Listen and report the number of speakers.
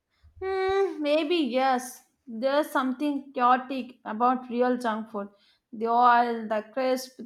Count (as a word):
one